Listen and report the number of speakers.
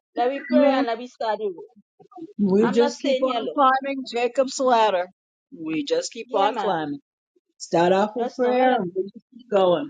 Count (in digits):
2